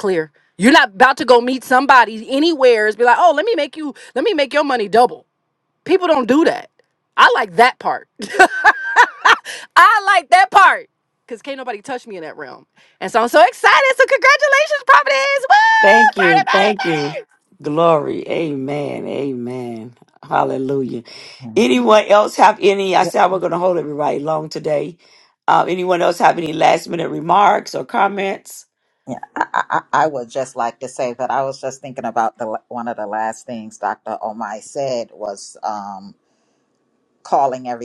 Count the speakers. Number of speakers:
3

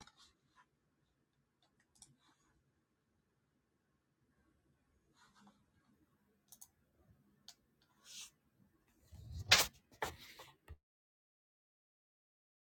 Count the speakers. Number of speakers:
0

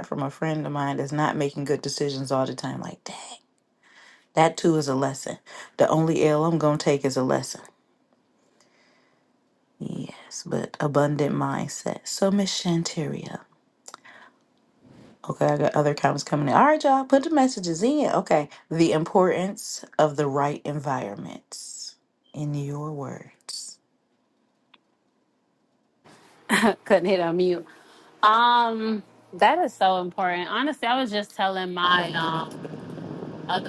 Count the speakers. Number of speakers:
2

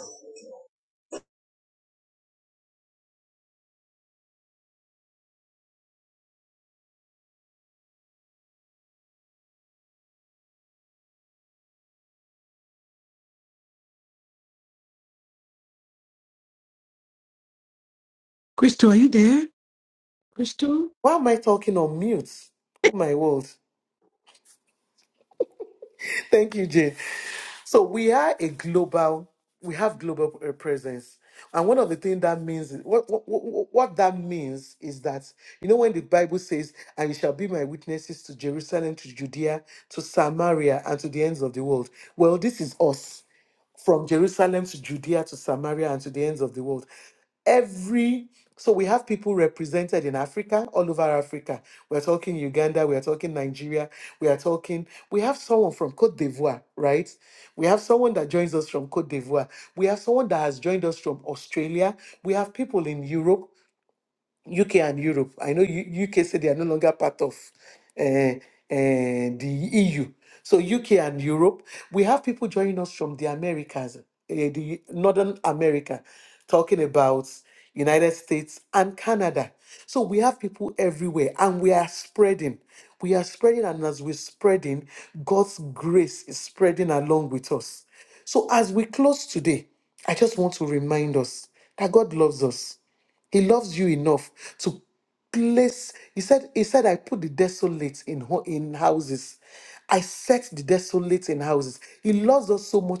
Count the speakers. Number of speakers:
2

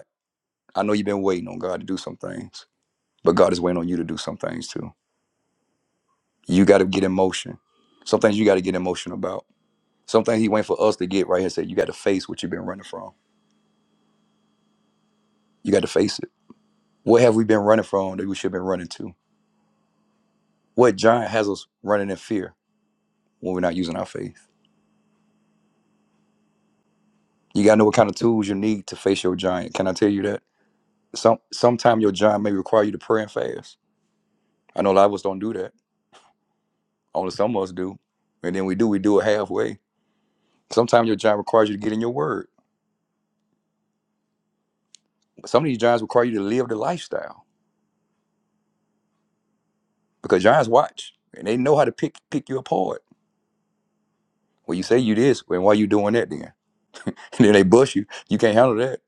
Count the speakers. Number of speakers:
1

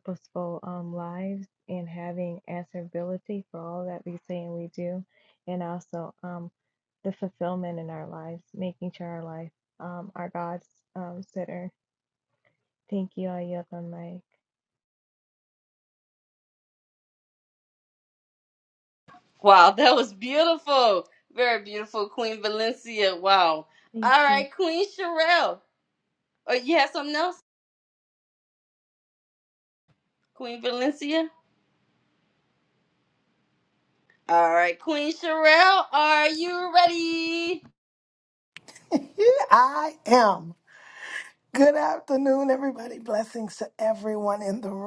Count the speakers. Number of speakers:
3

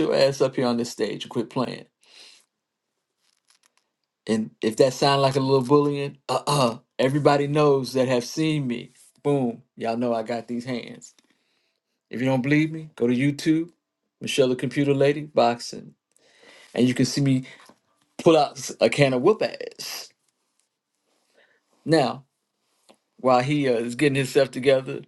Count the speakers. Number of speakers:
1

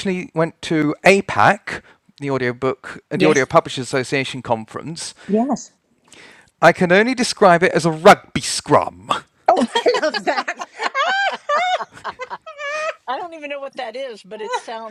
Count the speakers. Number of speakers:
3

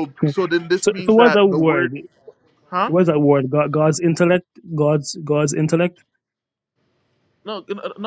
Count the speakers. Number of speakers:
2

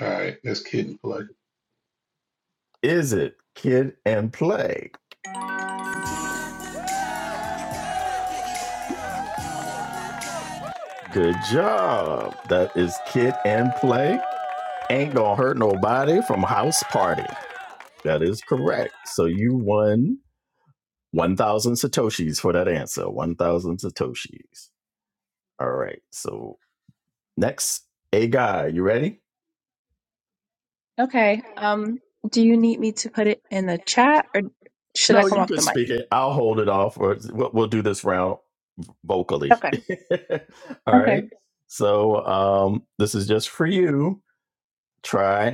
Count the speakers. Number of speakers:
3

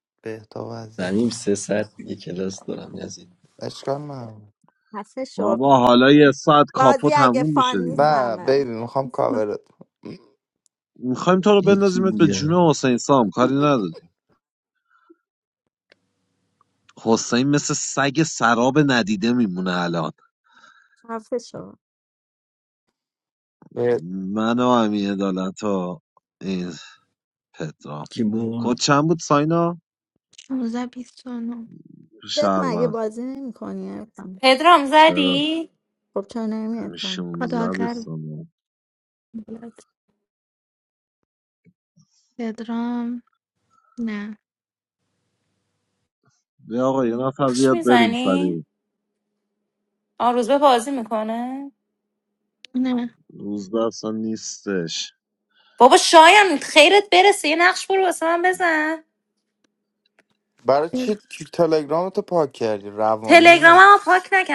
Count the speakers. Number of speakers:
6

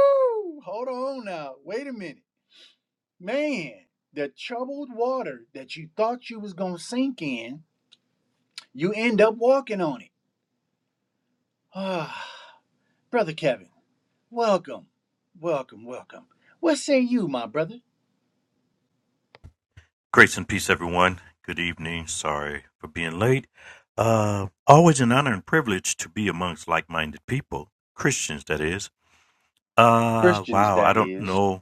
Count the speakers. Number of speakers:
2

